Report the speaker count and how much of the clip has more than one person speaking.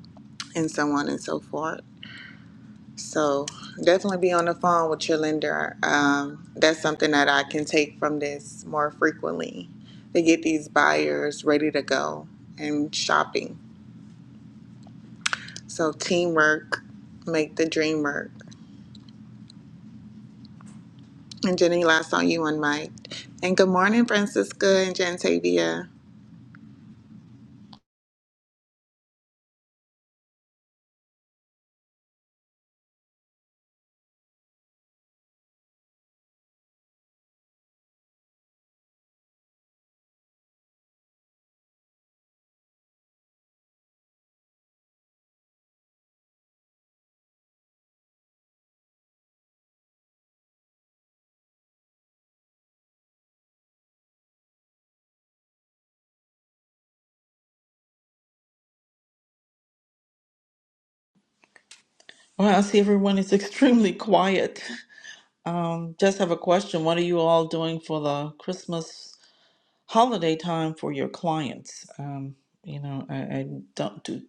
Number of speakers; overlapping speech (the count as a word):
two, no overlap